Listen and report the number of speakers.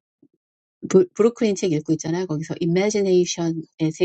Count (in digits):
1